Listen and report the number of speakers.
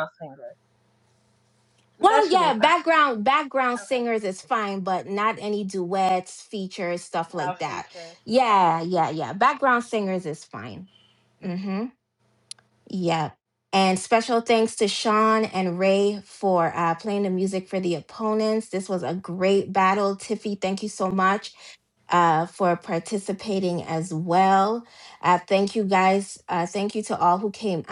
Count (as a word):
two